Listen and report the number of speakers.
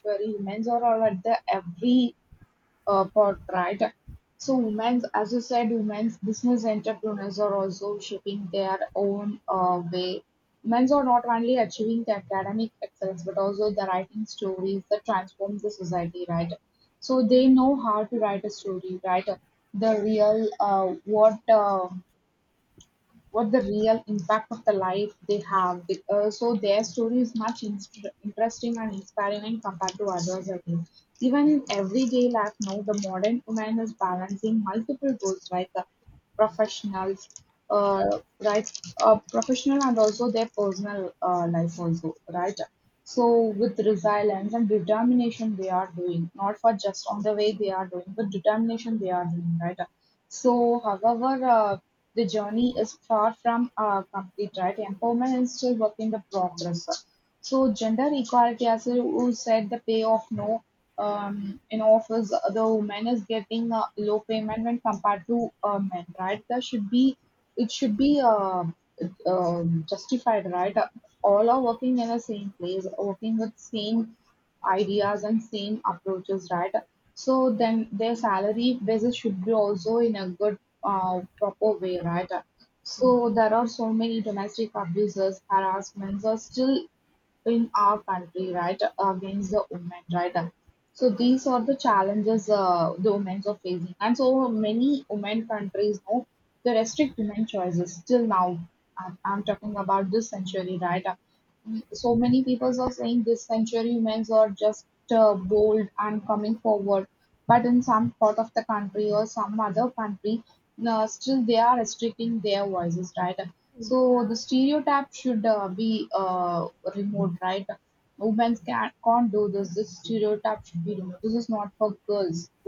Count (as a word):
one